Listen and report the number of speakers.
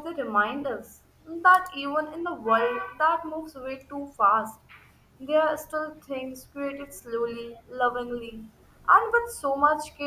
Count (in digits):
1